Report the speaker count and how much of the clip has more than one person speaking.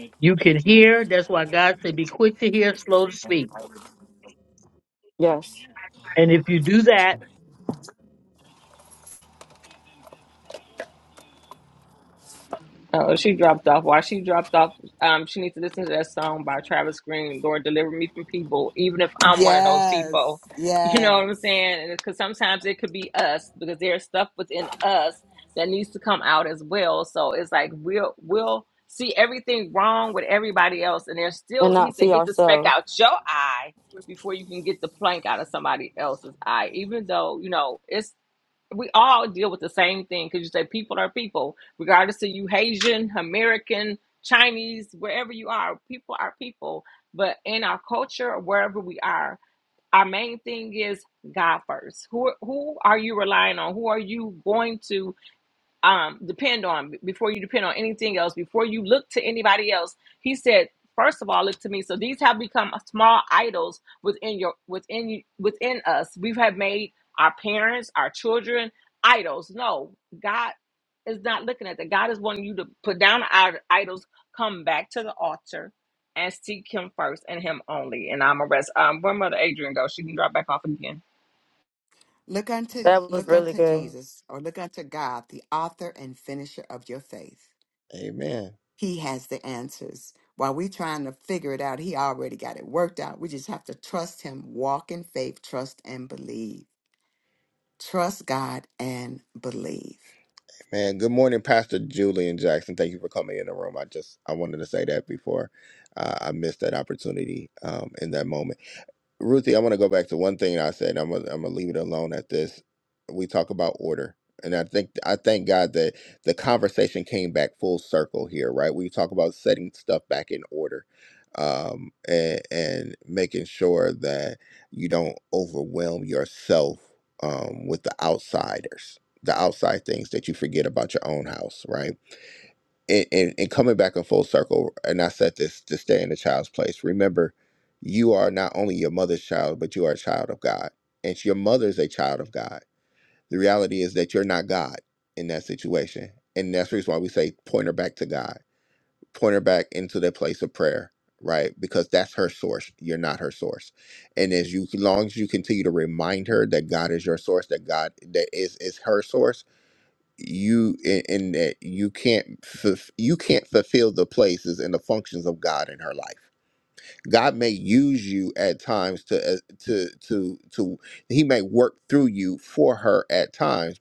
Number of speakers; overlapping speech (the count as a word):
five, about 2%